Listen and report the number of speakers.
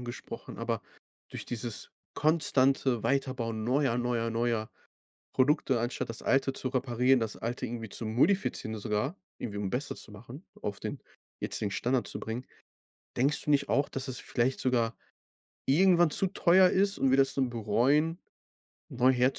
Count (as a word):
one